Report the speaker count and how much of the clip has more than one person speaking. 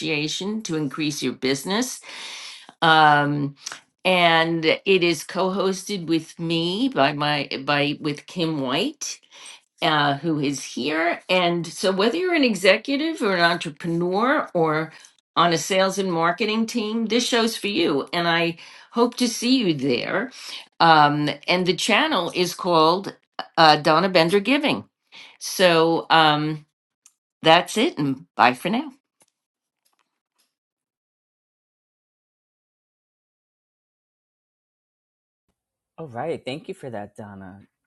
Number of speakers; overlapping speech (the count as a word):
two, no overlap